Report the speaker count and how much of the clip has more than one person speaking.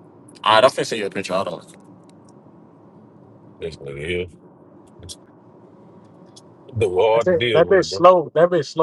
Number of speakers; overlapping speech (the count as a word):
three, about 10%